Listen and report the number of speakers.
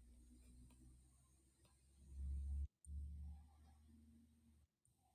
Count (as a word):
zero